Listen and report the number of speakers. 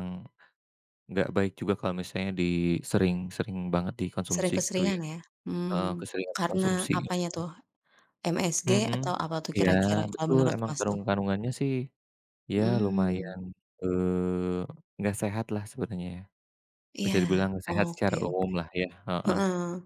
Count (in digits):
2